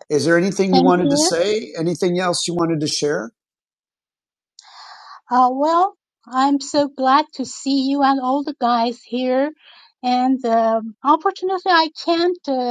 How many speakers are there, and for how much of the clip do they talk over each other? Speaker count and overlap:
2, about 4%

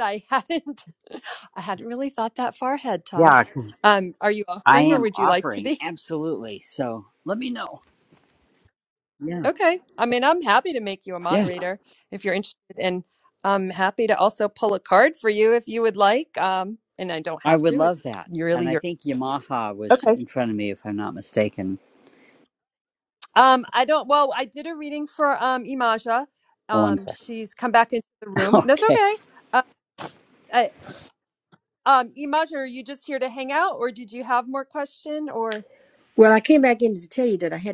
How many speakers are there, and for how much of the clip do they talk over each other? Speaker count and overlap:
3, about 11%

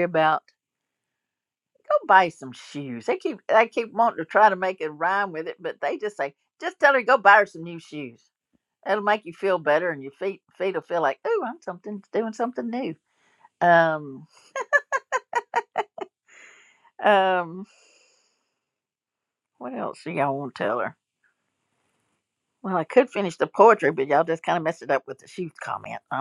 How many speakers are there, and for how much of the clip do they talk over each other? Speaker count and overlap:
1, no overlap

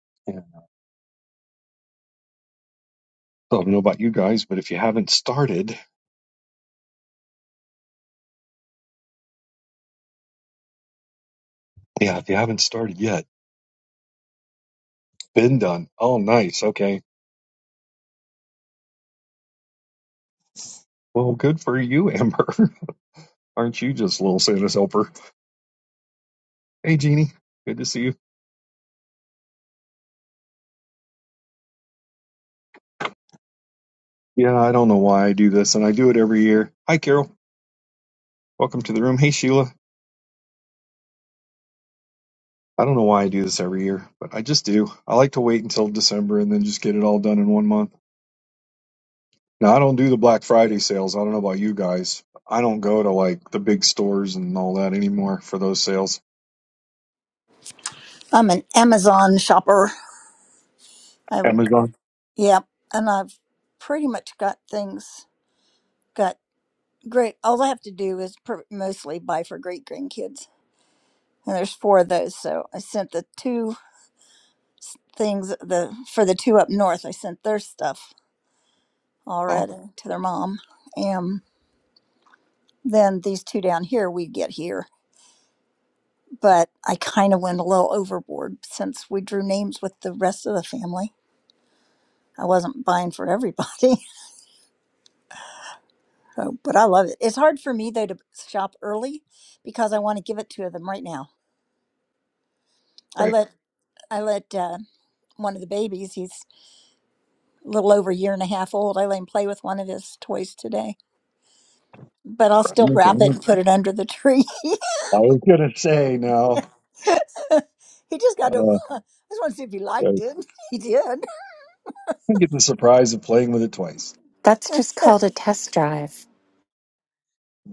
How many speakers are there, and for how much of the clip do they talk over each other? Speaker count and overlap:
3, about 1%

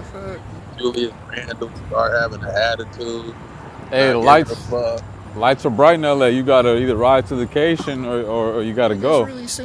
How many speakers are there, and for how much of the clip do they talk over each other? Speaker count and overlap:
3, about 8%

